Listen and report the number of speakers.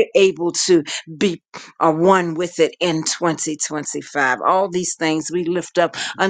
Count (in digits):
1